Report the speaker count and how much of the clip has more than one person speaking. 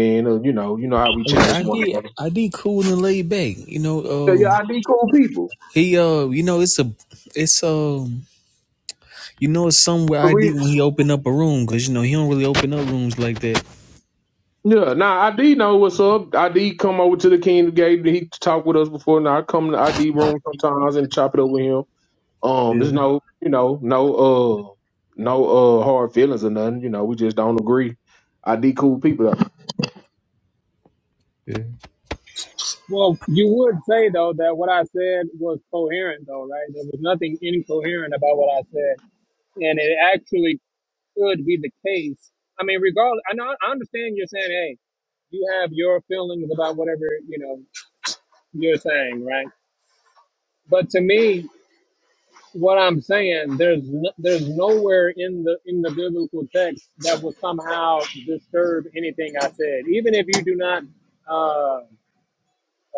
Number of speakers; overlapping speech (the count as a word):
three, about 2%